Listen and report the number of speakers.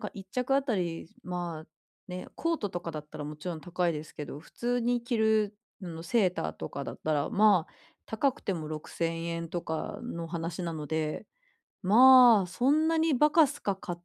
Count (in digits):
1